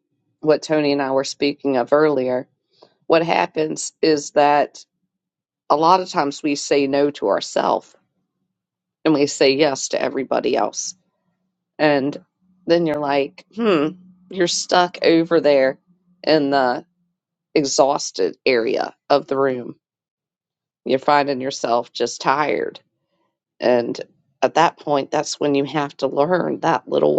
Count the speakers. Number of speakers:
1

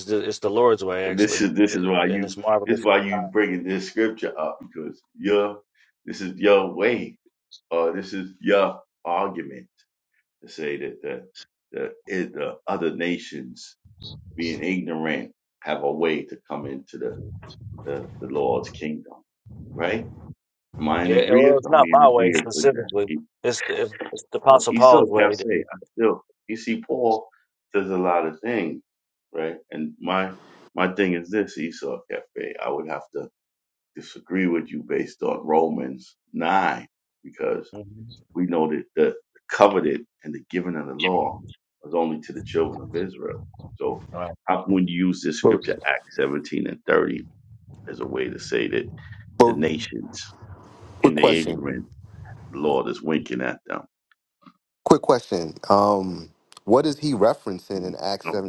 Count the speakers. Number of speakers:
3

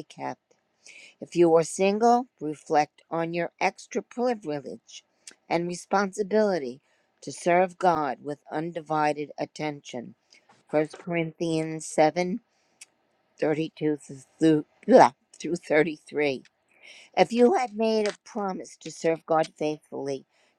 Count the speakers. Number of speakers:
1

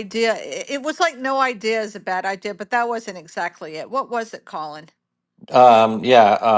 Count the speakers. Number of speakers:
2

